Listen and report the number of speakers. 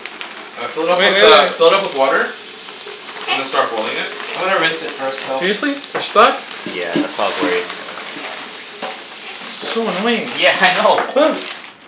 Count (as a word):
four